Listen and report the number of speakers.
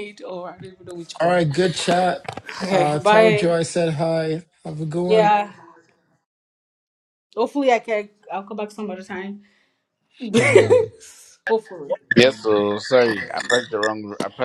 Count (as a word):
three